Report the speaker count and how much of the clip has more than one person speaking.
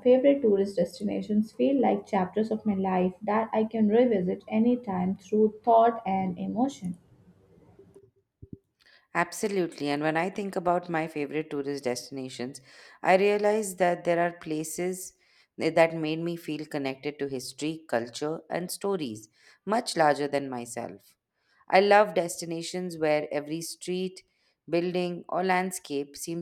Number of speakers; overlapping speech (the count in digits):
2, no overlap